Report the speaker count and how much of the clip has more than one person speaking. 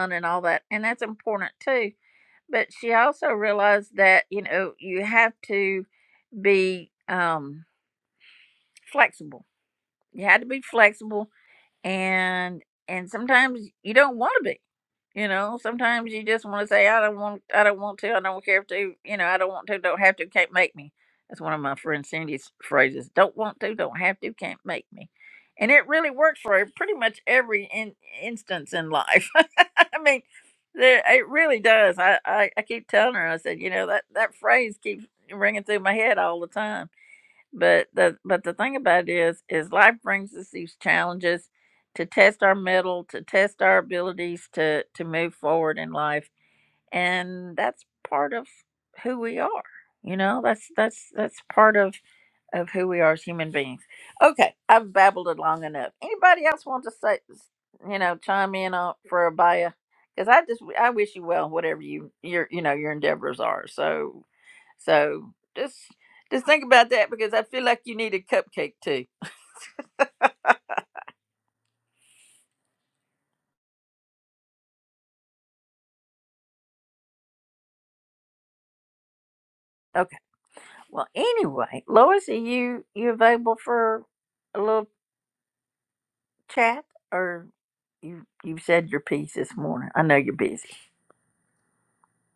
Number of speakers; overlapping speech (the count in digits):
1, no overlap